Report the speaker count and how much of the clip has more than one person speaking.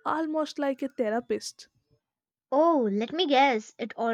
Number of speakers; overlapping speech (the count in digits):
2, no overlap